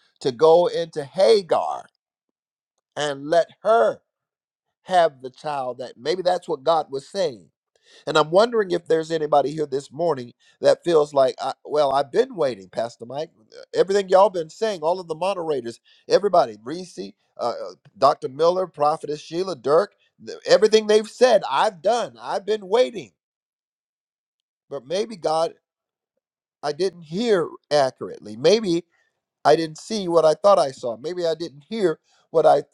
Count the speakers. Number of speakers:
1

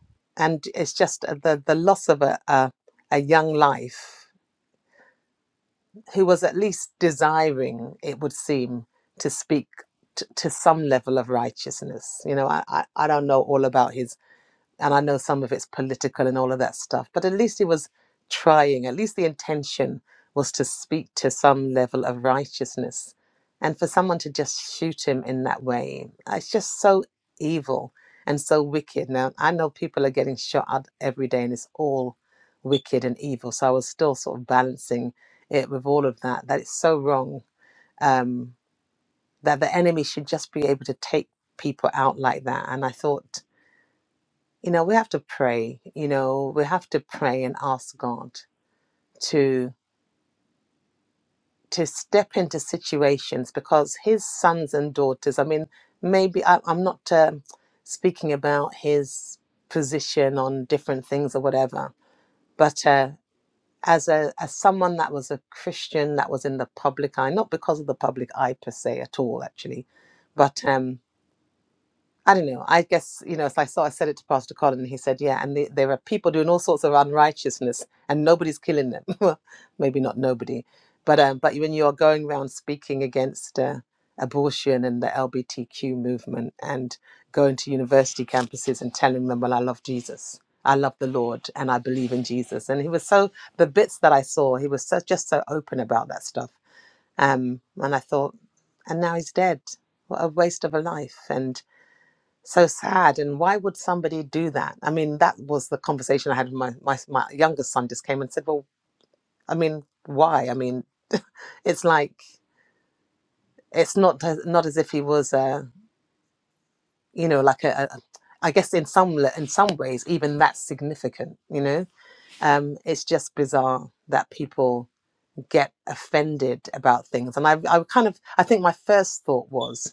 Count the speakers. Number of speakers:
1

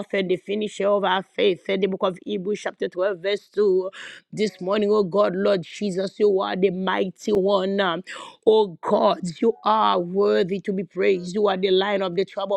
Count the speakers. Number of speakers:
1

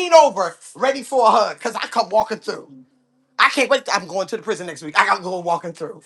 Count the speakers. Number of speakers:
1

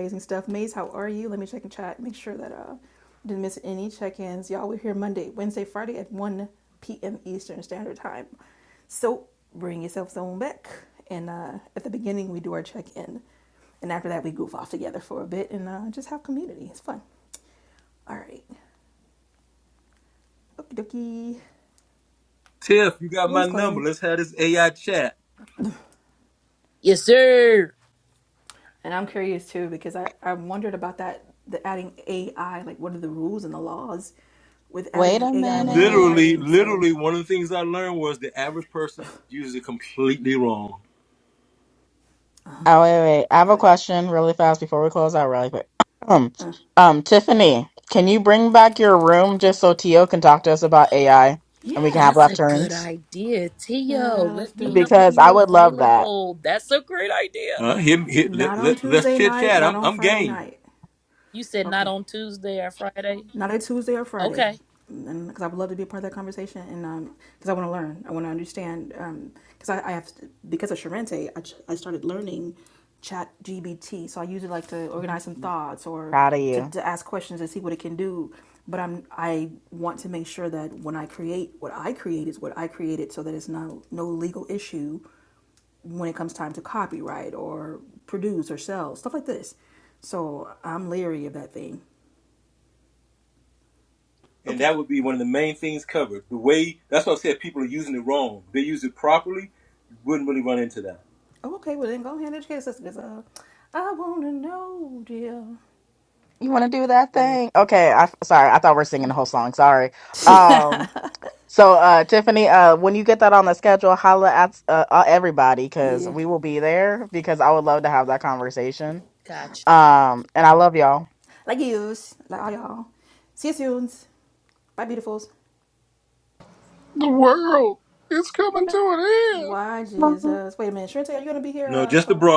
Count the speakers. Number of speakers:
5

